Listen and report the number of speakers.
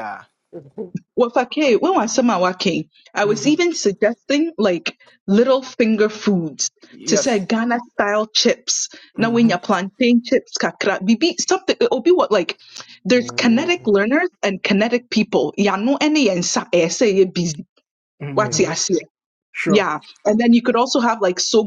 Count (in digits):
2